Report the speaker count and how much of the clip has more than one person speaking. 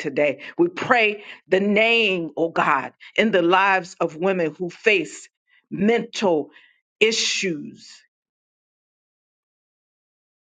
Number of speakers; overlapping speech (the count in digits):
1, no overlap